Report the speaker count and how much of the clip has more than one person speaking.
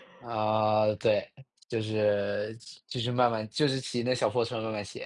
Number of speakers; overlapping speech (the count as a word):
one, no overlap